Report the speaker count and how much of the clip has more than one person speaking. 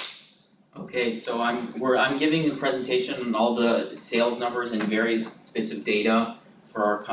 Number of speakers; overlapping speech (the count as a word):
one, no overlap